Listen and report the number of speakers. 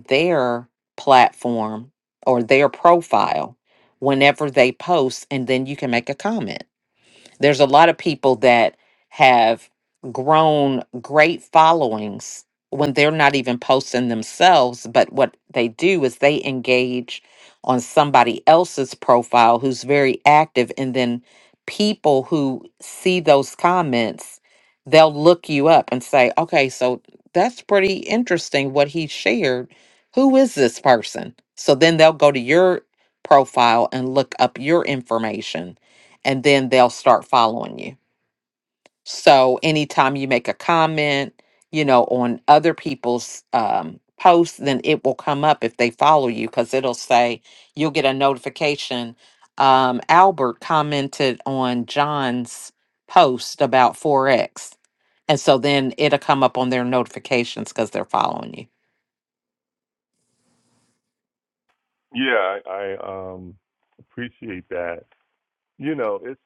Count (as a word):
two